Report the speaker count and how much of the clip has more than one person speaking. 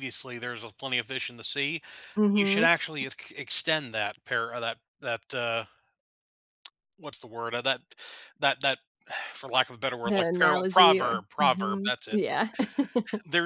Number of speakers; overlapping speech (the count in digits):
2, about 18%